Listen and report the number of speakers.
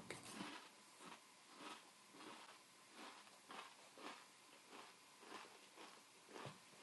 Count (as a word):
zero